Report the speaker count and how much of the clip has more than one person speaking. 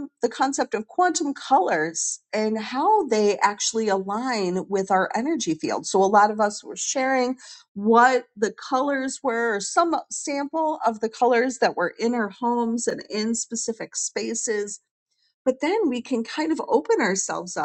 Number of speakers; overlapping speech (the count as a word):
one, no overlap